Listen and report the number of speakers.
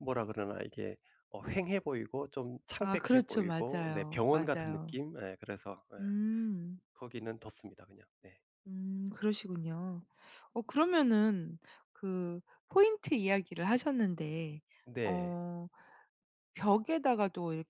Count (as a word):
two